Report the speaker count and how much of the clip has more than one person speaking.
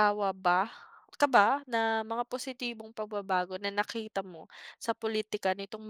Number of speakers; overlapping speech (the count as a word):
one, no overlap